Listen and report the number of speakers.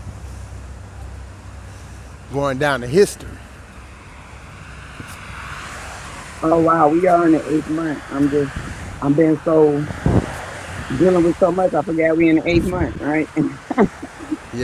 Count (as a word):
two